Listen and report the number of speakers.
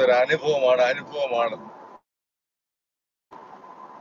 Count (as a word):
one